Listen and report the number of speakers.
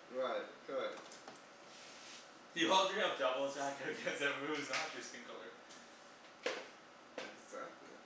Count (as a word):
two